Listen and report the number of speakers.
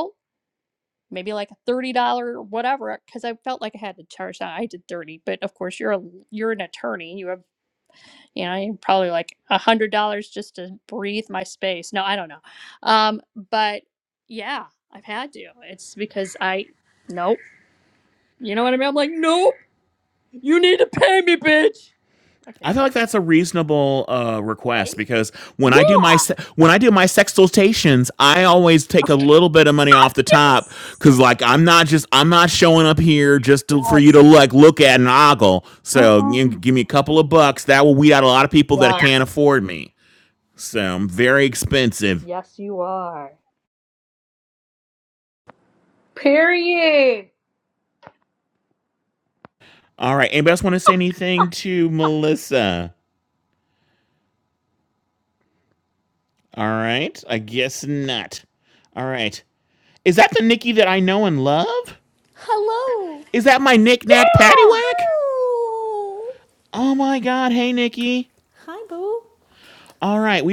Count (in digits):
4